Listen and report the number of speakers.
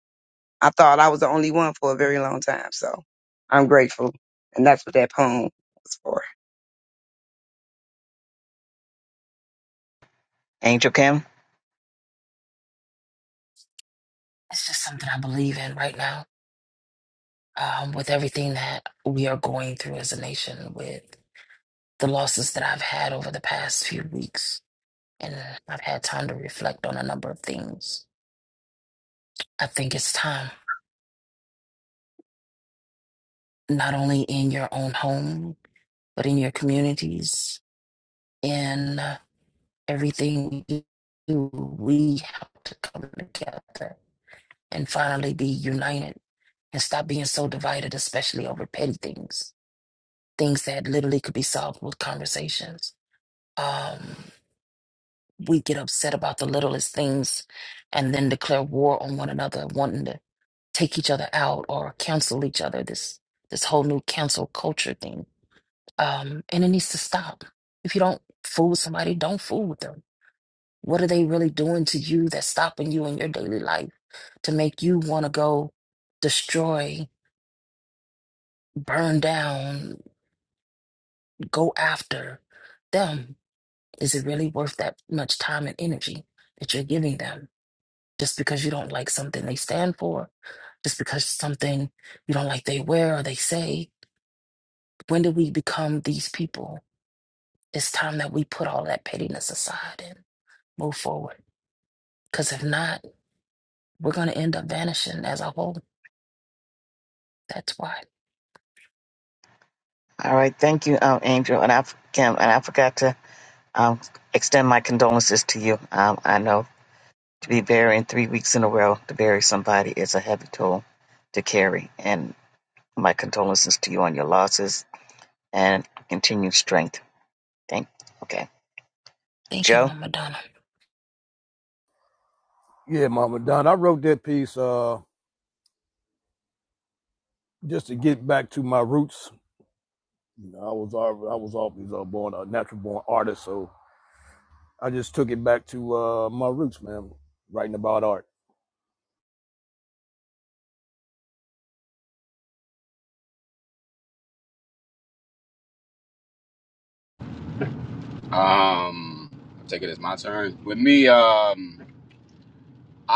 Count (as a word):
five